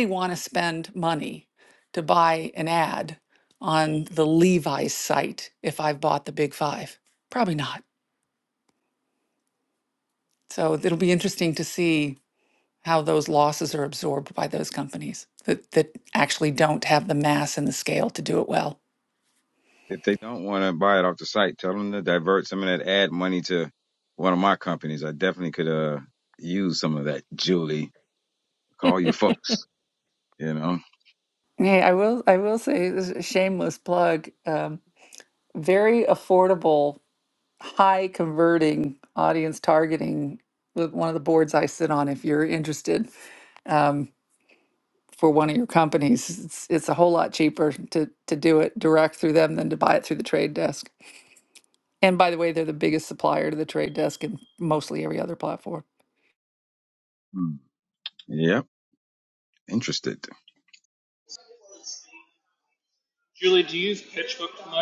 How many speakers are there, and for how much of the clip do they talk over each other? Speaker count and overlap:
3, no overlap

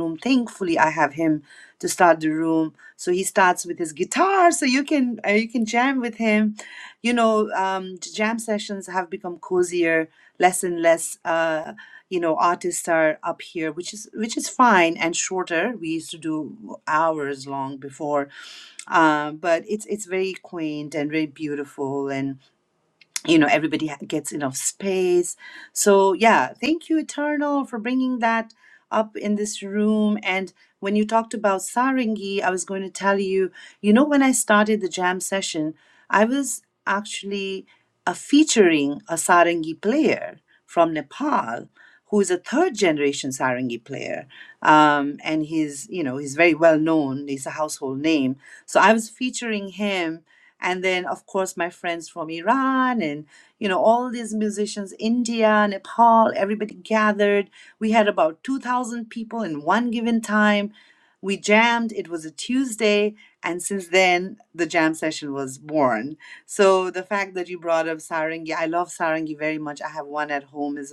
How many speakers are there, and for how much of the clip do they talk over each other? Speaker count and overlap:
1, no overlap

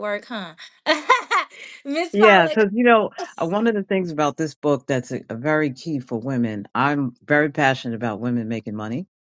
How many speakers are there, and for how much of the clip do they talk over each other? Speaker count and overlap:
2, about 5%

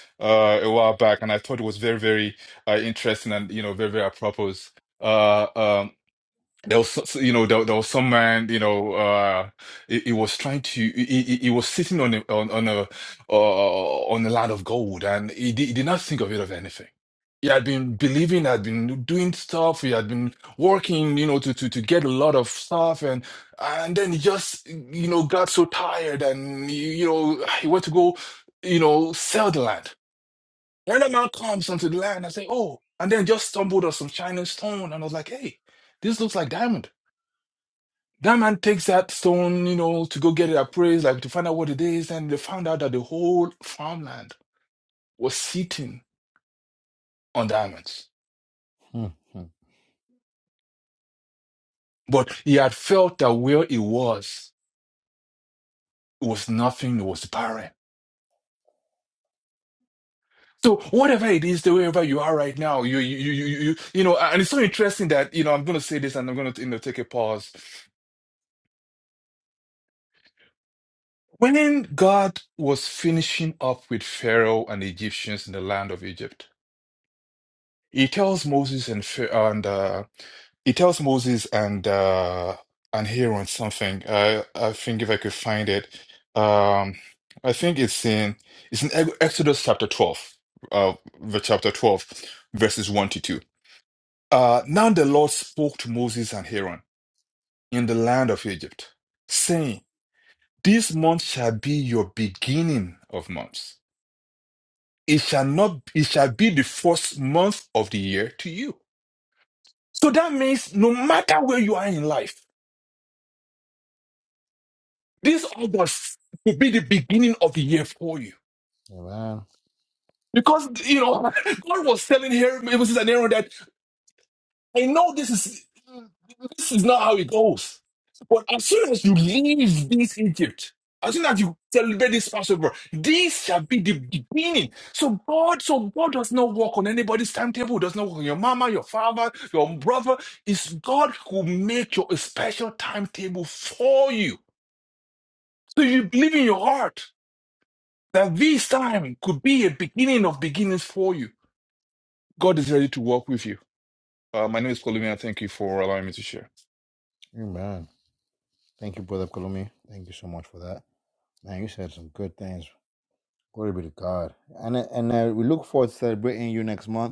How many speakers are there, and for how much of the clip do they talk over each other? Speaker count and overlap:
2, no overlap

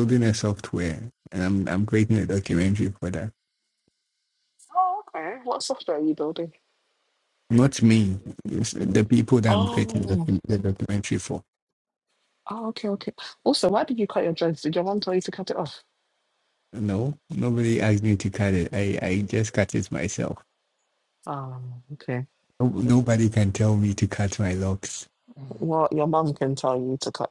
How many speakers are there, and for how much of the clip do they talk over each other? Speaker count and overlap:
2, about 3%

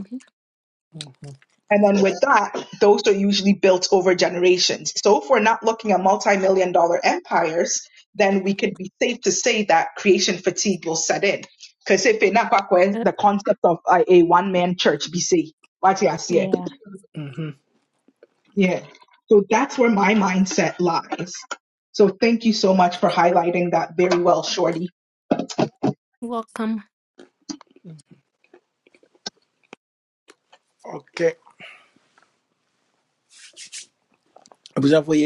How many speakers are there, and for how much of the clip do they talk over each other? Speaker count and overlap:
3, under 1%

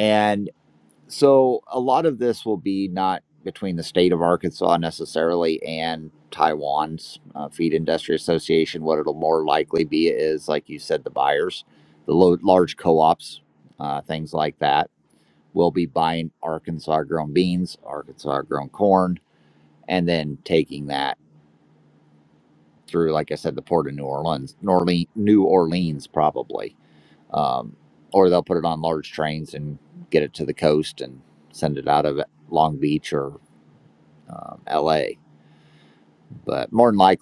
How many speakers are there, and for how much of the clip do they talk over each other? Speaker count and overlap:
1, no overlap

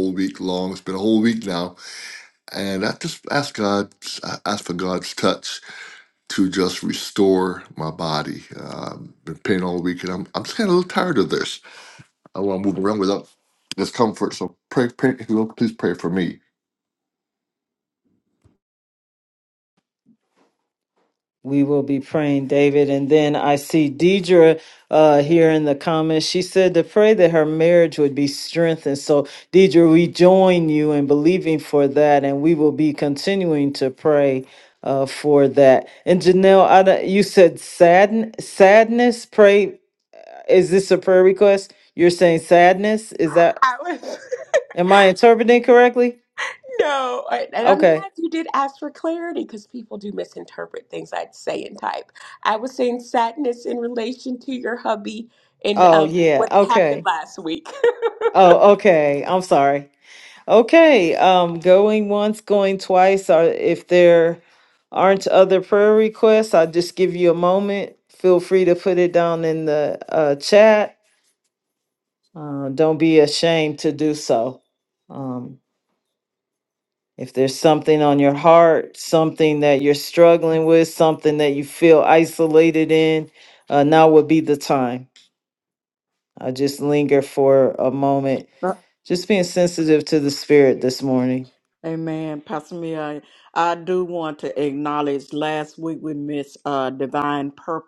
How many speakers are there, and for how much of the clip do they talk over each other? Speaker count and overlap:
4, about 2%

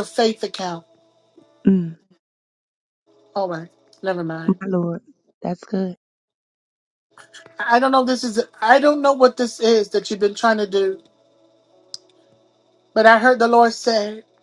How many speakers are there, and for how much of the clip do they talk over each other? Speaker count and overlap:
2, about 1%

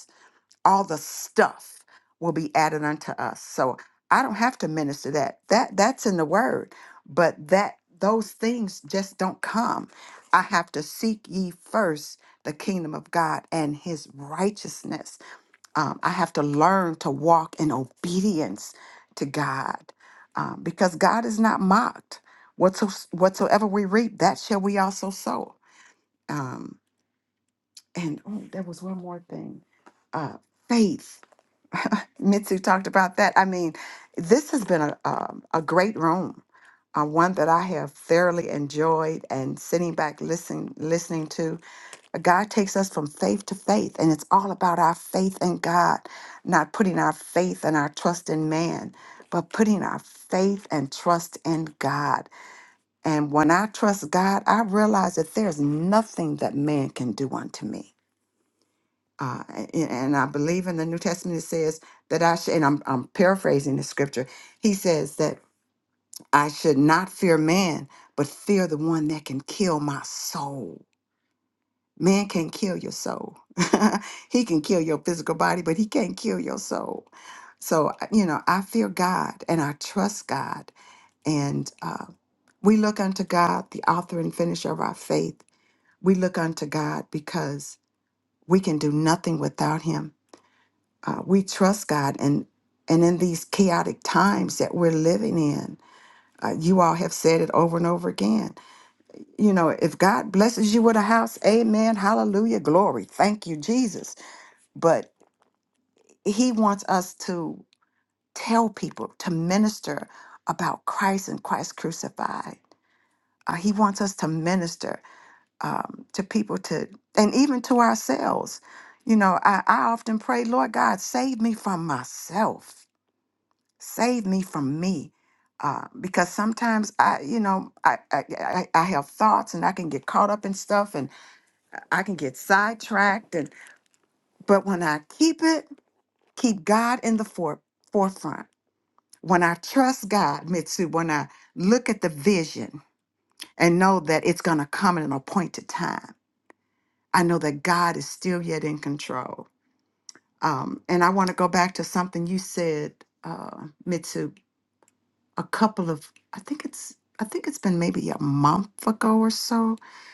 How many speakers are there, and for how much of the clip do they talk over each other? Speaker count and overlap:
1, no overlap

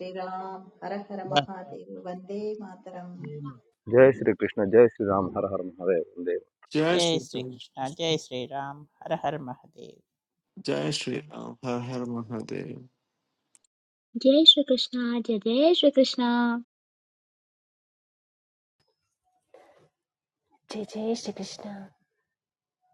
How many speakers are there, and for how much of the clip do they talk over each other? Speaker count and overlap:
6, no overlap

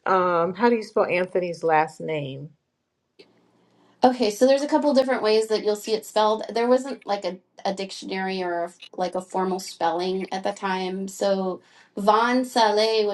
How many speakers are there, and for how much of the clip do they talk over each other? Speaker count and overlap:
2, no overlap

